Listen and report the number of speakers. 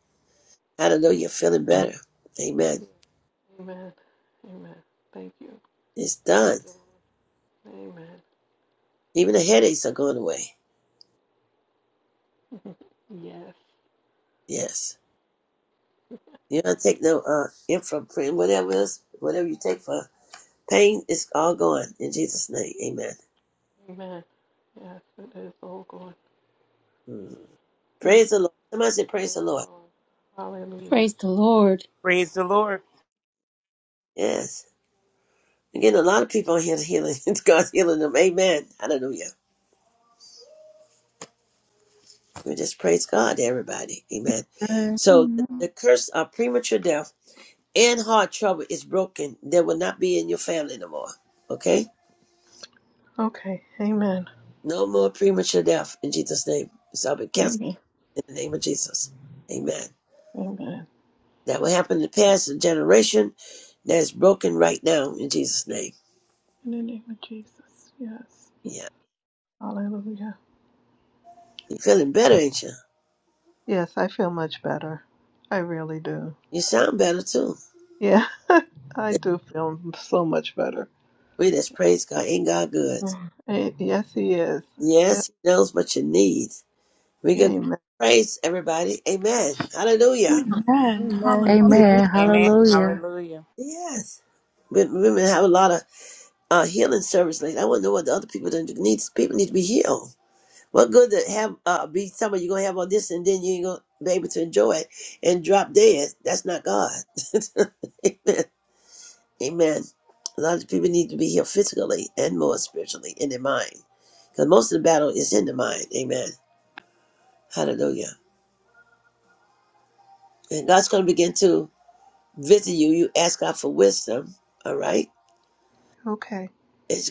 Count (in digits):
6